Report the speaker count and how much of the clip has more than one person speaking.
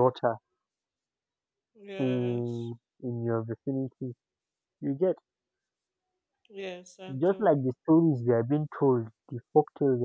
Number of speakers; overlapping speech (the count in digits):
2, about 7%